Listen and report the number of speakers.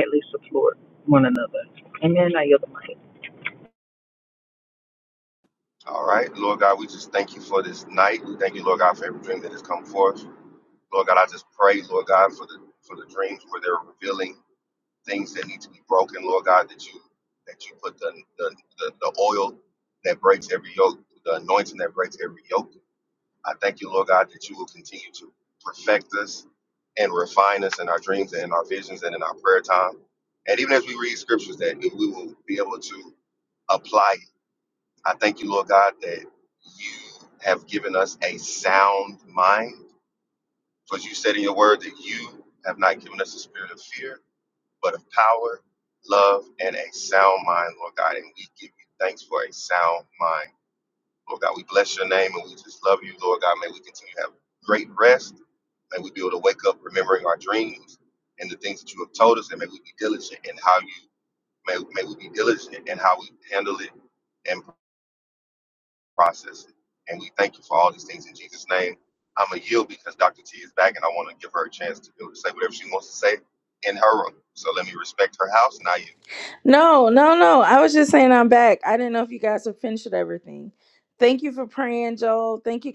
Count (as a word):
three